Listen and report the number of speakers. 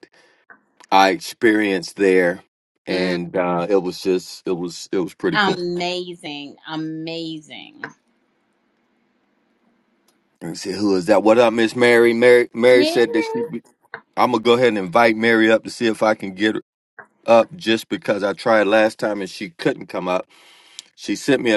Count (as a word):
two